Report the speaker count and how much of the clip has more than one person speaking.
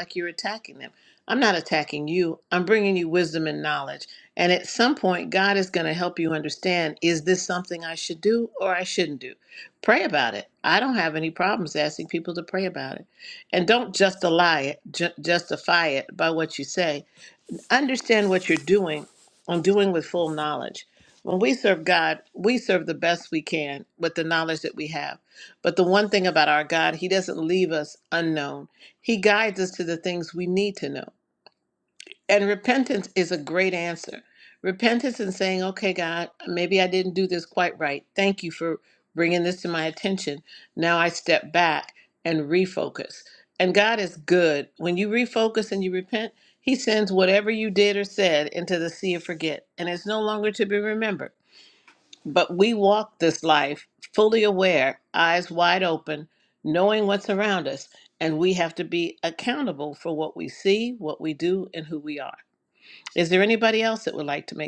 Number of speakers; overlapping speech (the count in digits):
1, no overlap